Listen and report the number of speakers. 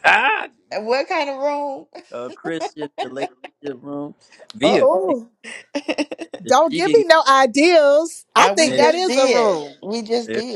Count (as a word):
three